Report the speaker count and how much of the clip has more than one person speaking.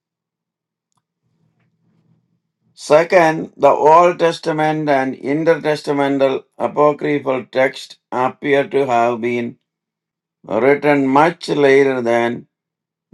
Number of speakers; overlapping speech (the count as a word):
one, no overlap